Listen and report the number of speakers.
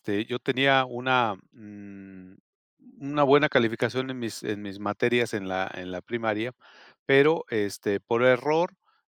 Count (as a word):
one